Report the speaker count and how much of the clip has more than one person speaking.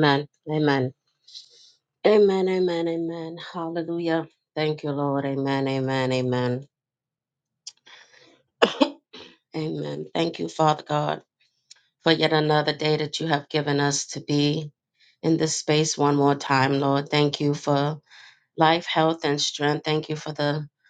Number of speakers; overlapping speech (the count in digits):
1, no overlap